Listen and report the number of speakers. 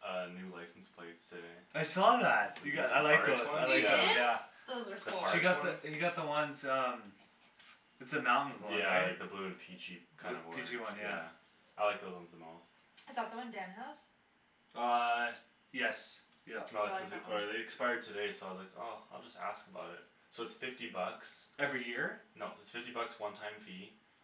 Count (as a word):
three